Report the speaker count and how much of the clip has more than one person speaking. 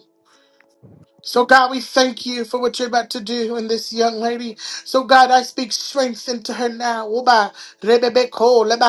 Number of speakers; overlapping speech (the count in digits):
1, no overlap